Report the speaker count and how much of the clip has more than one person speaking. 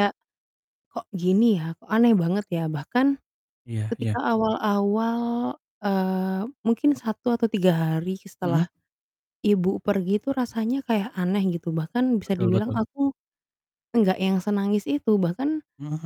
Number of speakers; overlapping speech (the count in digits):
2, about 6%